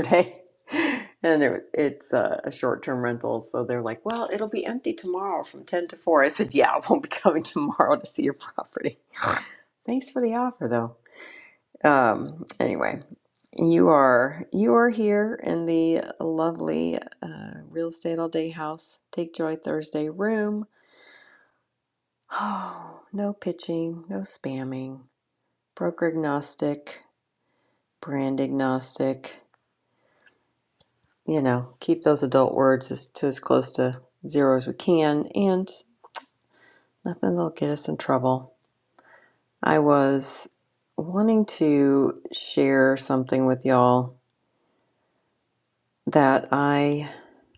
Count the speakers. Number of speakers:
1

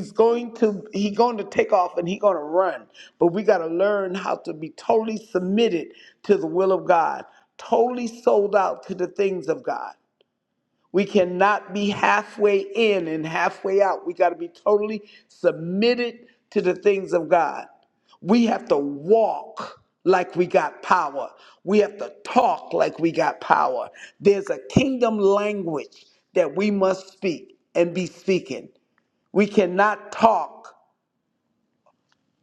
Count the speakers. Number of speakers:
1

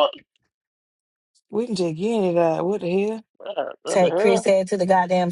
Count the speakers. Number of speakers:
3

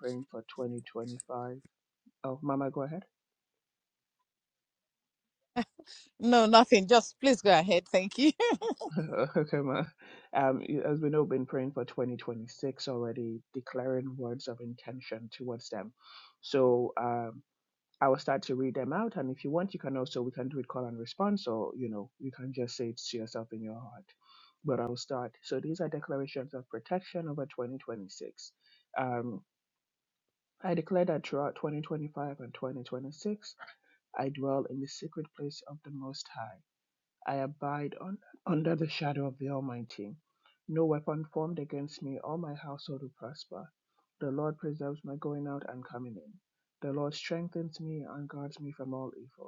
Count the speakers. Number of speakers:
2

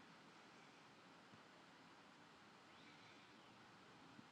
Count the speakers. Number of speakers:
0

